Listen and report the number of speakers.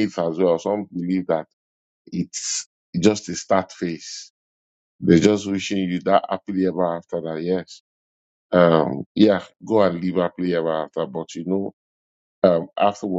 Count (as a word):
one